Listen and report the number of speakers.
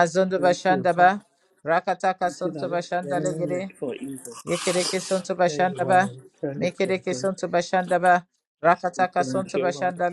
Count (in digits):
2